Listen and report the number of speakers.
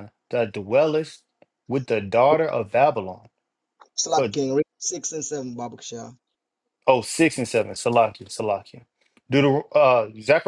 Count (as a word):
two